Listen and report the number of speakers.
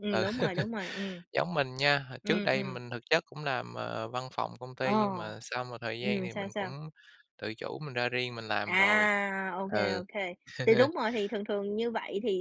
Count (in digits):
2